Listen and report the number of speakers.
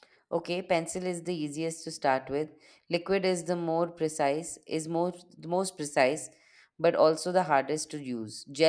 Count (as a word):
one